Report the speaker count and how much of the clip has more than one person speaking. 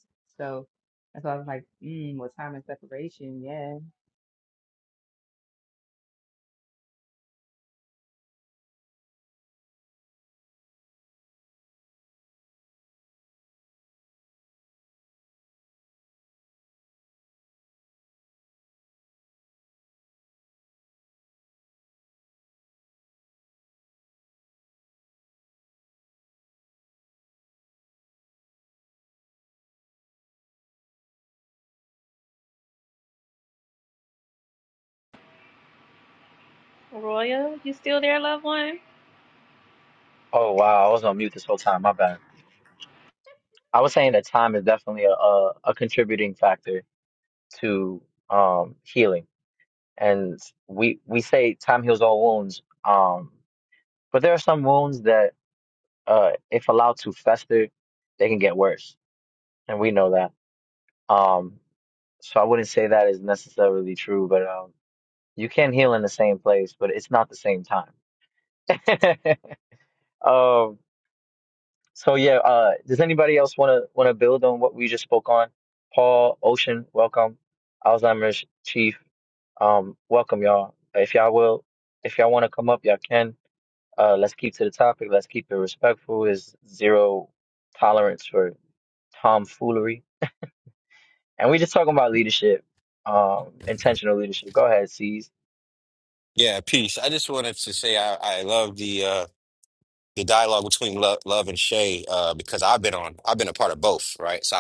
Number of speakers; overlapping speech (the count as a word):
four, no overlap